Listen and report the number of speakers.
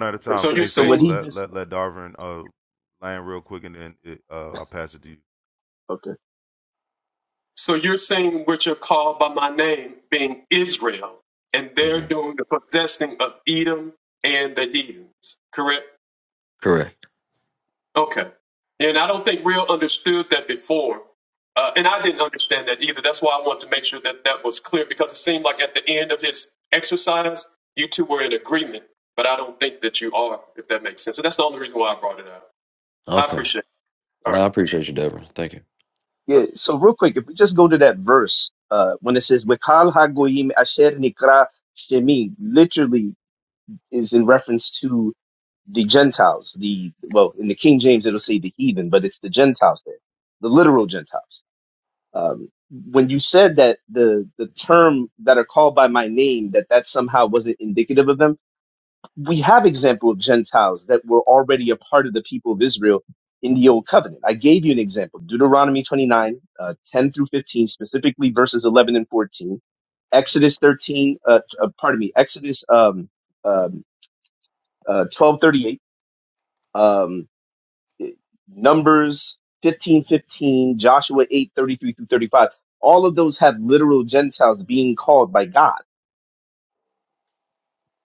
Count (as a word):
four